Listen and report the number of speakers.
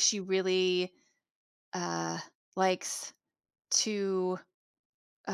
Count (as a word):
one